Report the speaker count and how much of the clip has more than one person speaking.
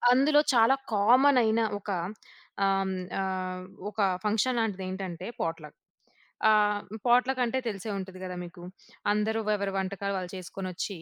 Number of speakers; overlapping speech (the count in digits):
1, no overlap